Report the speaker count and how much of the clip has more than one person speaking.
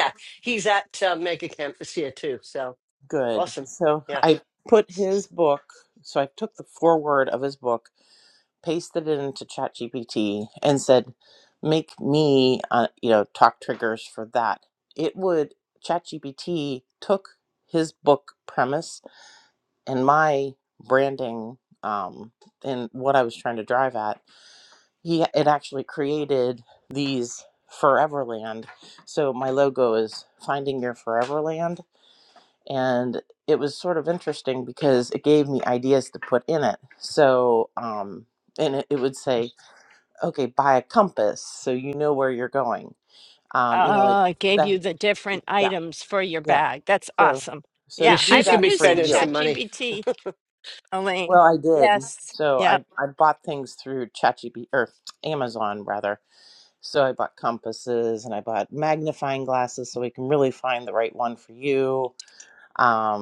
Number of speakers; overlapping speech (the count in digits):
3, about 6%